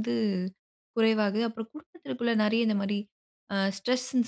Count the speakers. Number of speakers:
1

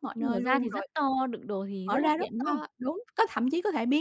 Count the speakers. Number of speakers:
2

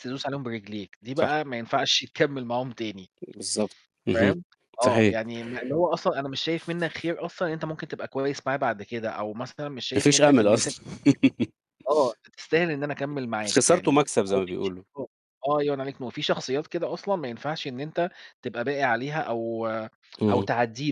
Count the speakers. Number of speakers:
2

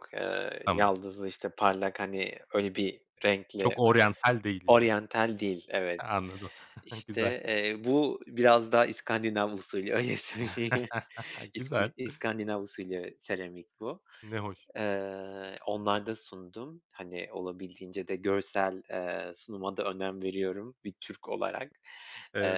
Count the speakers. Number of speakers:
2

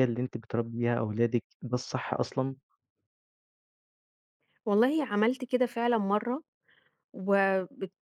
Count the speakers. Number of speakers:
2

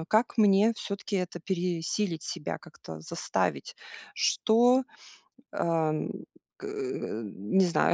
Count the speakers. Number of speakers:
1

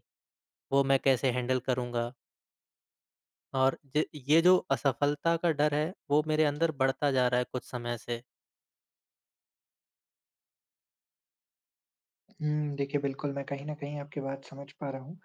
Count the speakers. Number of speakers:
2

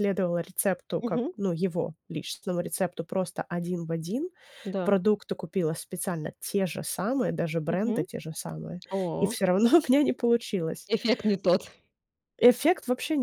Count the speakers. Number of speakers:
2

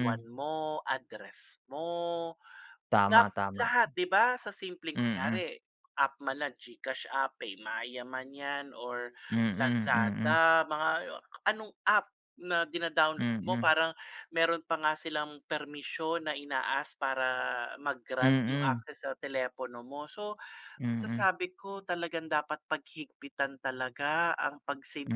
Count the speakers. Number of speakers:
2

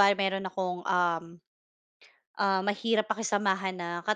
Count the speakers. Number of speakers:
1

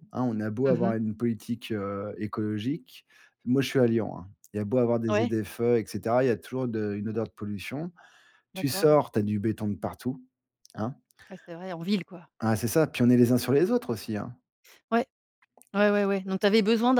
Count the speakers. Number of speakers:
2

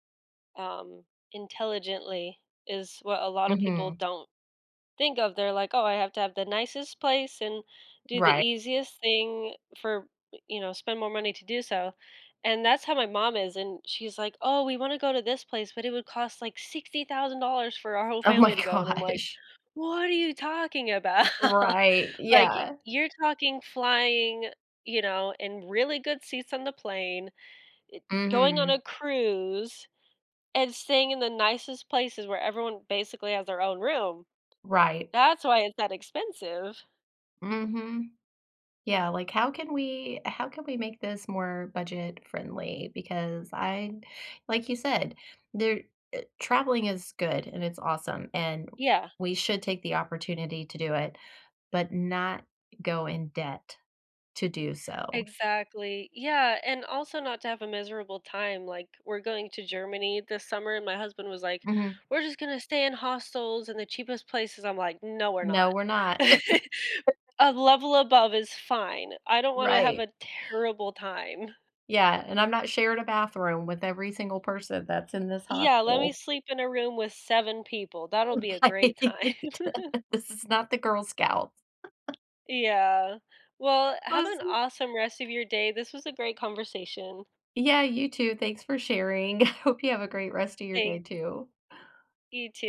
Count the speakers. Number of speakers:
2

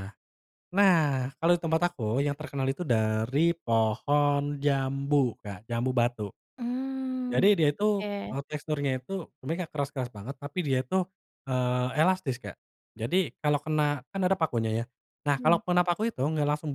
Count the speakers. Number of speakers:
2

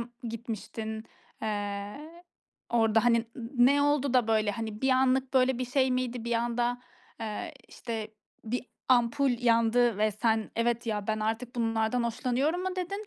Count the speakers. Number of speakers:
1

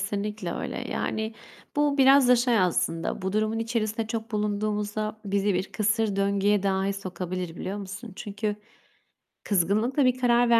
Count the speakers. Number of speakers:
1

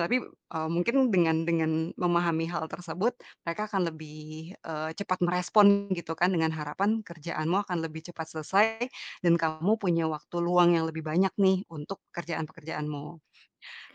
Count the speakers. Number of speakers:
1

